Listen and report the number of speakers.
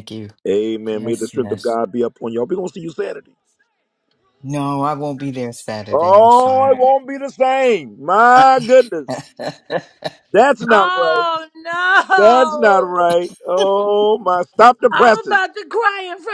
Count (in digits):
3